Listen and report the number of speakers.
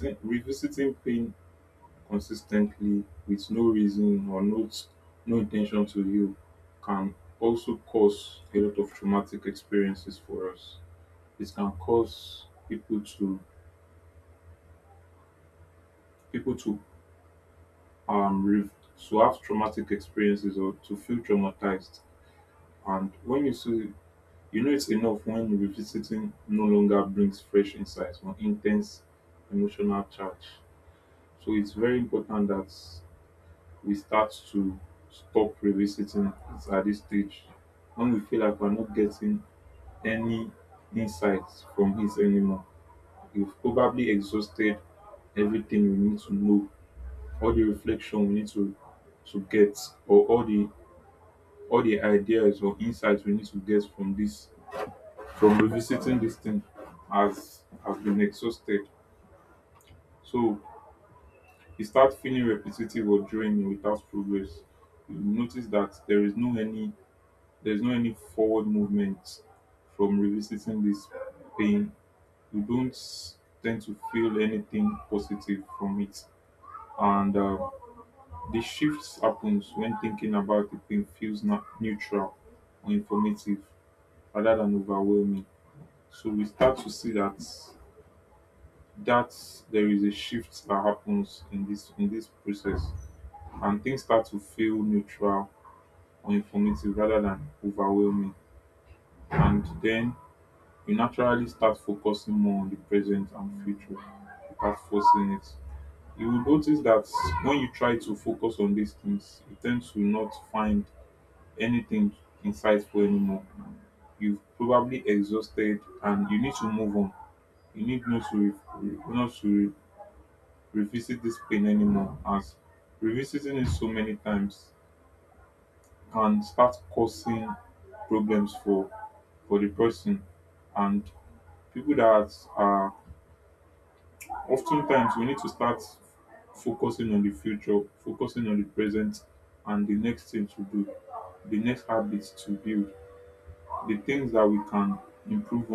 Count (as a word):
one